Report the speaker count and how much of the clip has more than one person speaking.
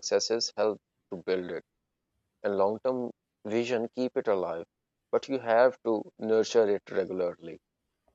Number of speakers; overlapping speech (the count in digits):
1, no overlap